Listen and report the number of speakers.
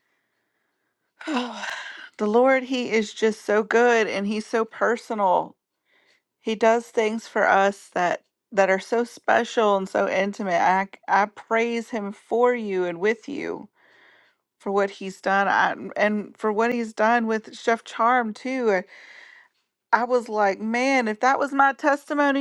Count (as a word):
one